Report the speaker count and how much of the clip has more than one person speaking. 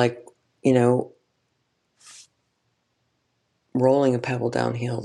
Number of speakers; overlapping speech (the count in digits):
1, no overlap